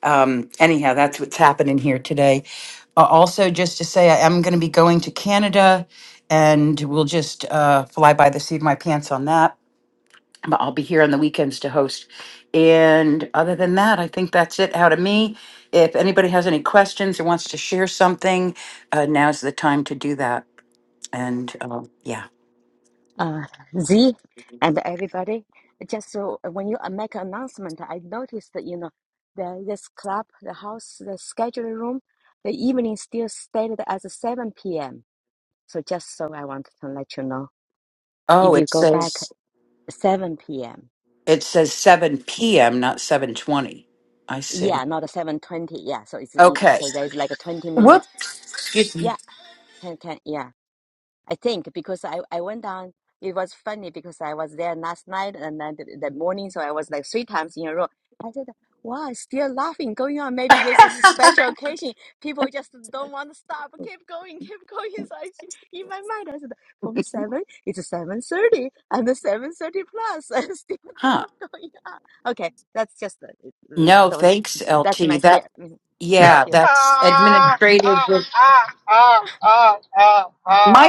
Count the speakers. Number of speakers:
three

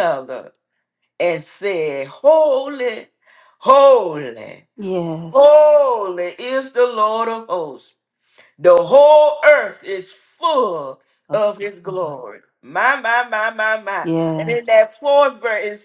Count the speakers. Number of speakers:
two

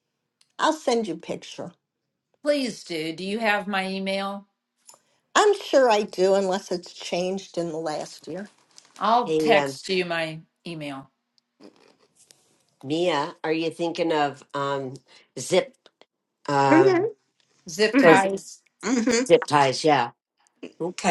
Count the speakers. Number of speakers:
three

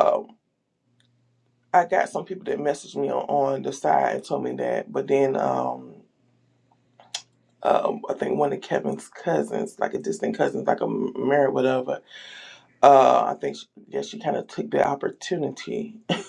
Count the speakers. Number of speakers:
one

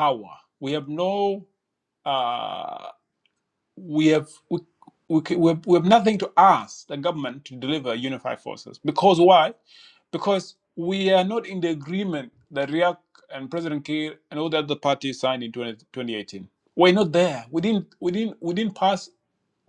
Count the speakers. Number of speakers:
one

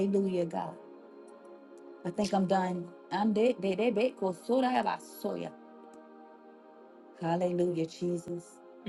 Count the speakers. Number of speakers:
one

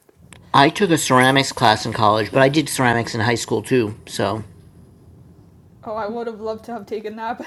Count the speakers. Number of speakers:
two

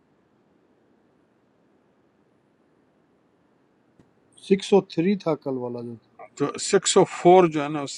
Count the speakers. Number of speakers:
two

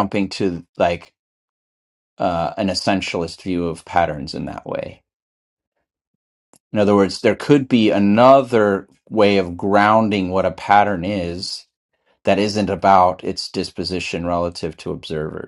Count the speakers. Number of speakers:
one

